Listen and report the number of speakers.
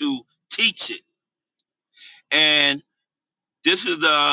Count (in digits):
1